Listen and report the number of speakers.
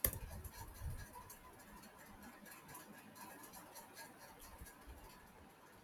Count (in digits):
0